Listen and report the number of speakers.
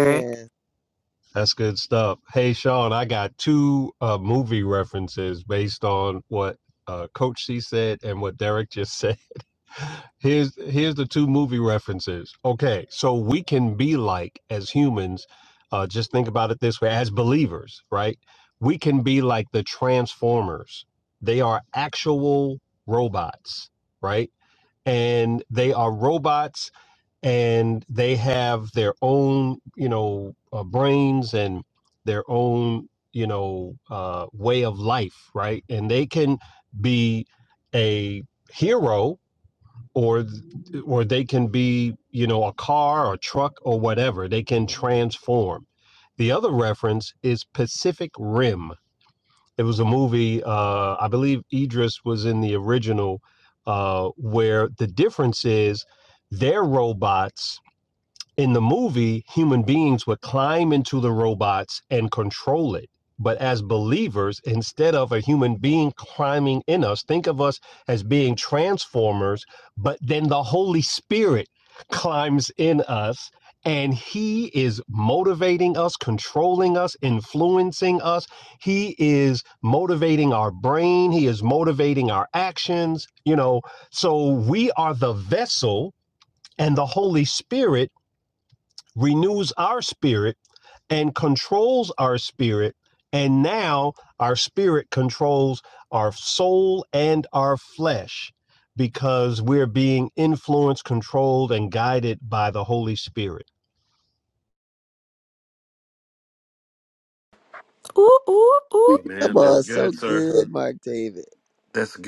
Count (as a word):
four